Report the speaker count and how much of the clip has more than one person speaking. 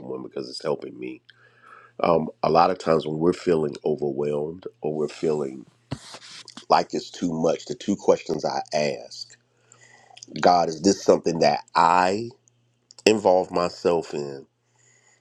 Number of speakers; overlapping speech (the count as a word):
one, no overlap